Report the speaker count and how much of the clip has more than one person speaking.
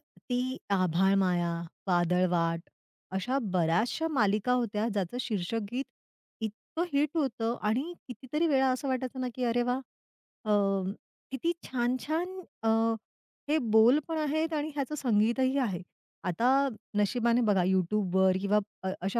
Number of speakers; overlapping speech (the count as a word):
one, no overlap